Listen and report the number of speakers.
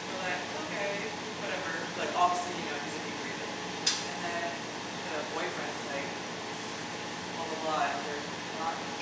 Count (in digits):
1